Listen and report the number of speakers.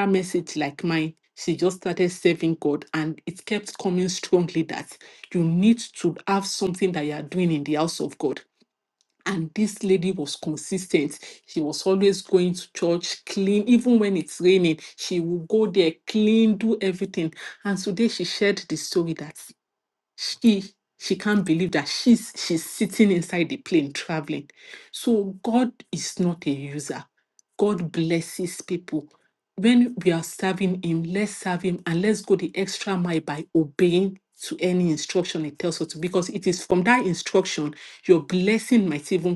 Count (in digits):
1